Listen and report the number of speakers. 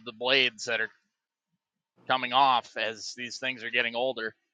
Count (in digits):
1